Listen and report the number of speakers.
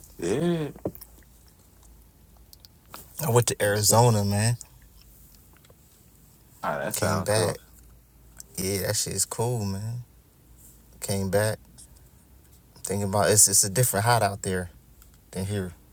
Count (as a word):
two